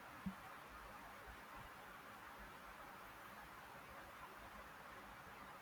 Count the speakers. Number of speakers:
zero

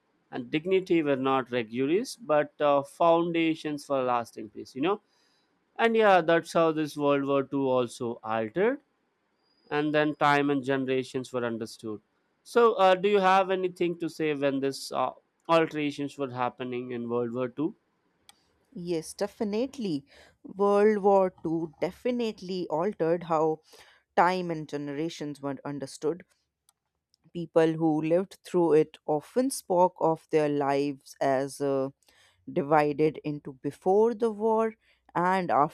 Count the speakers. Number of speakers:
two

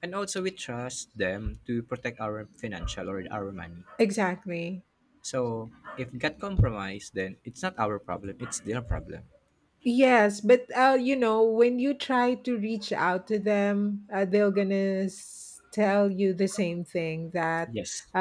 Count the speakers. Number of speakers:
two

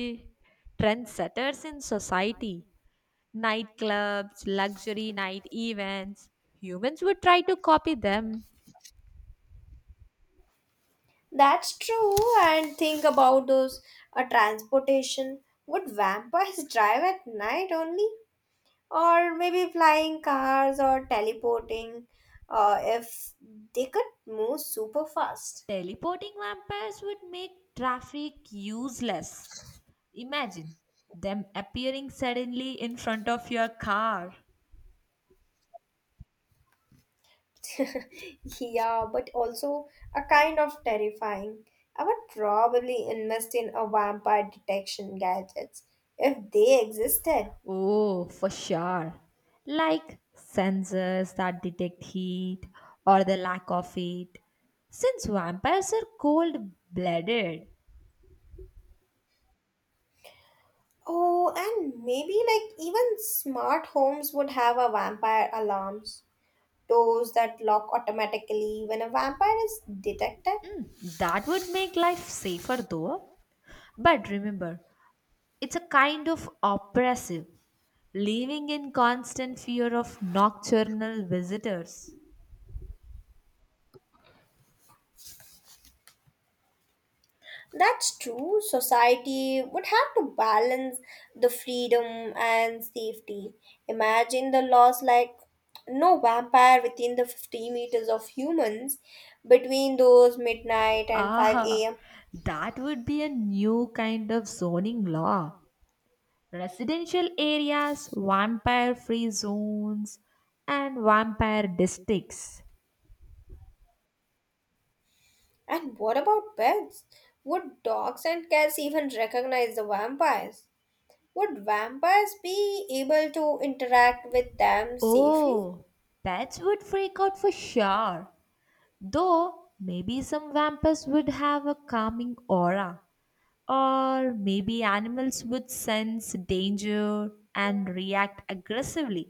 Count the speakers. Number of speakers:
two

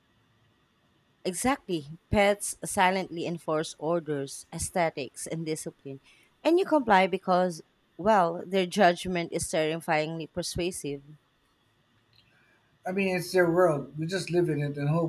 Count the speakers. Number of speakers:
two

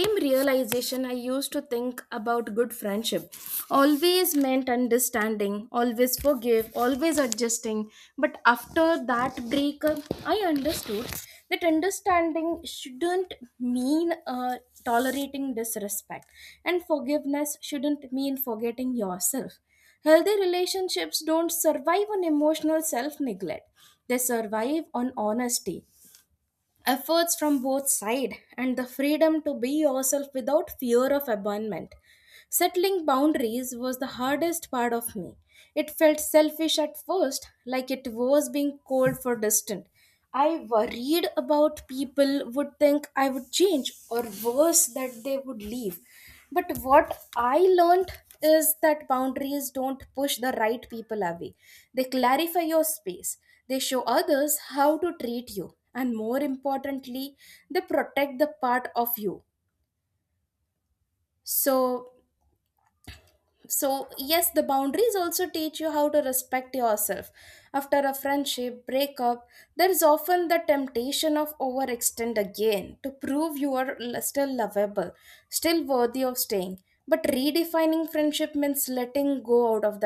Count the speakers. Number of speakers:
one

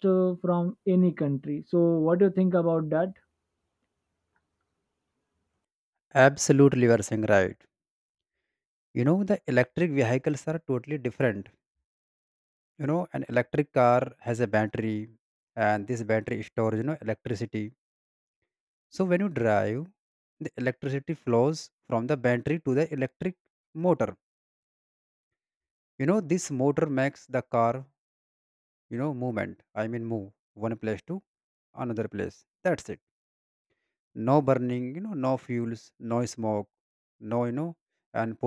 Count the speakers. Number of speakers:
two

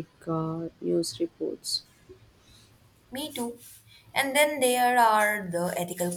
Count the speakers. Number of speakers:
two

